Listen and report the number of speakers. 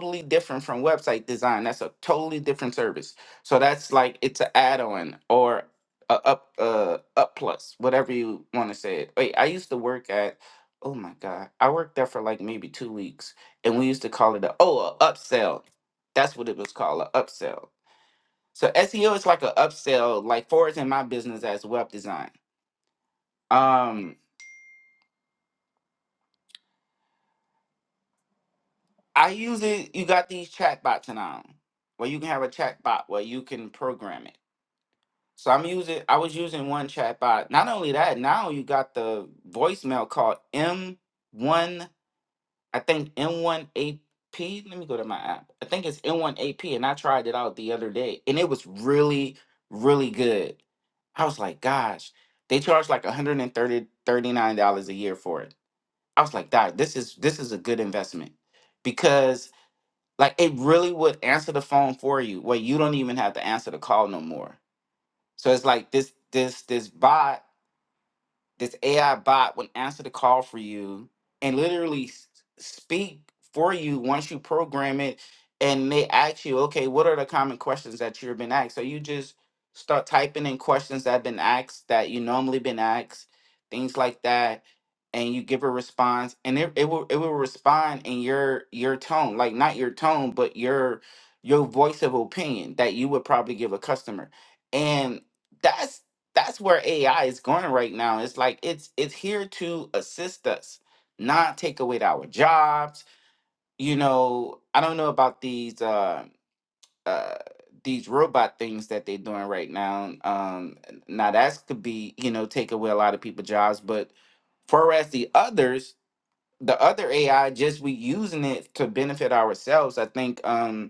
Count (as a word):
one